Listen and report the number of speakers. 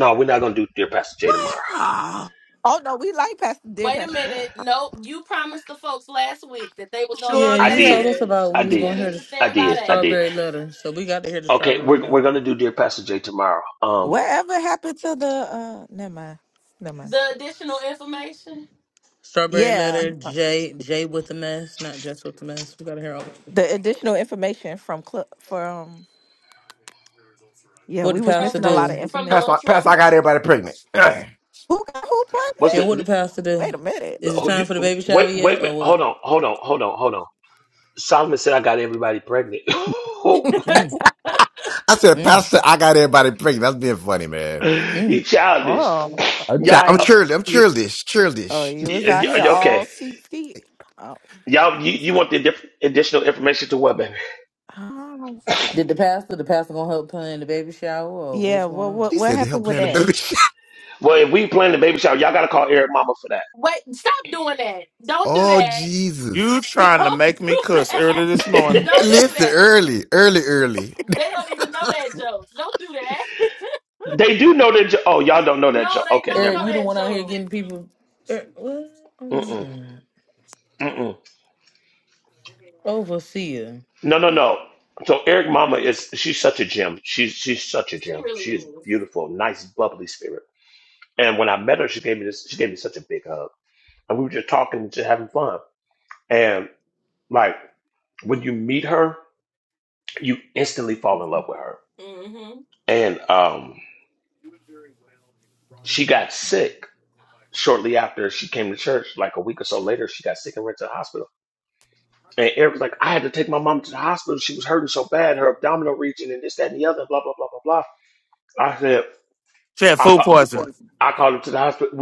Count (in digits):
7